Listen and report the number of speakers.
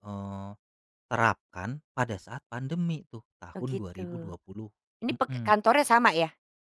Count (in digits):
2